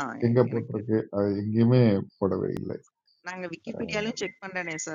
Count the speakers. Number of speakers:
two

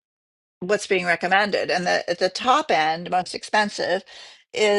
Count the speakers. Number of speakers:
one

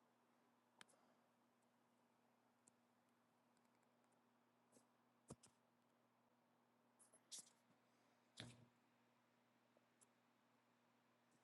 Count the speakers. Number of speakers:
zero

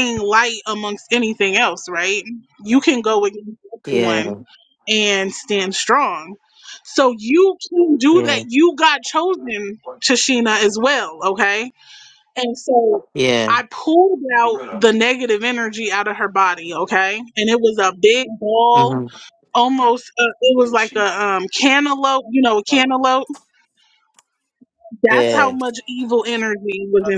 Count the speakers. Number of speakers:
two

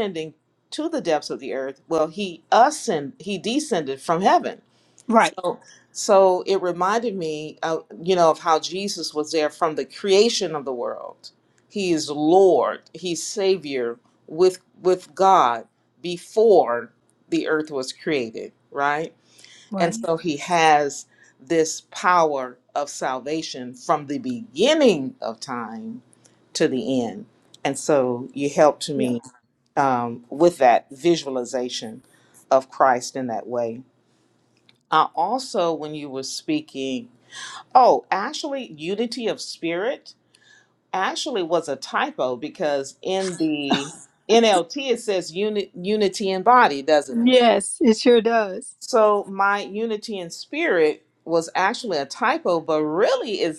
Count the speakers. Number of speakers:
two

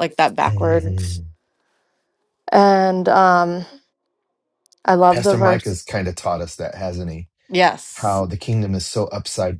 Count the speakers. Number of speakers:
two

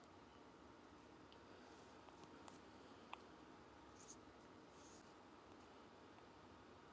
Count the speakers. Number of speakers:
zero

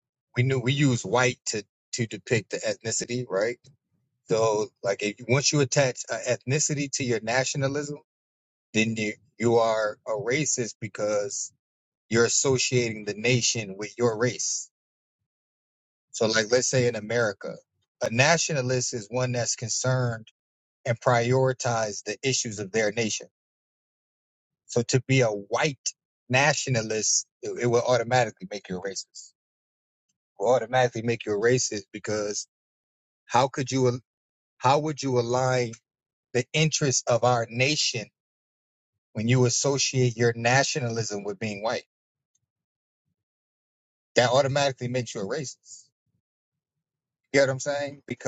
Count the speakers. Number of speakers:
one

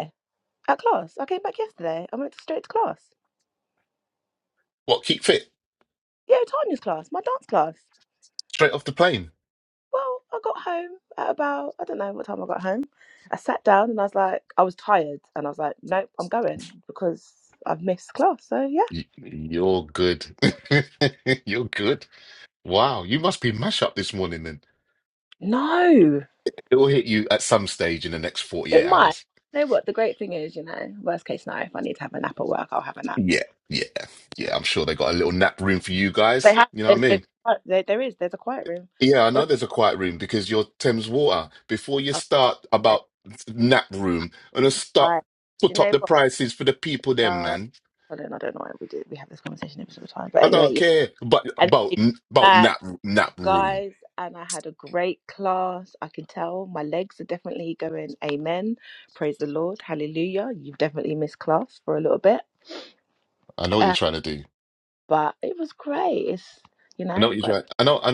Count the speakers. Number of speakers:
two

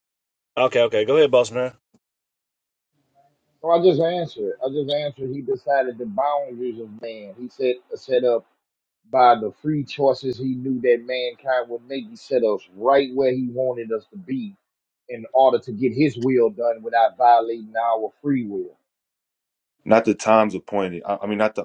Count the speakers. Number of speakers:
three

